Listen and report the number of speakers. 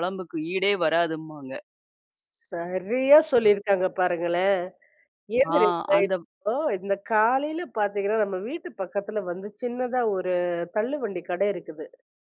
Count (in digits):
2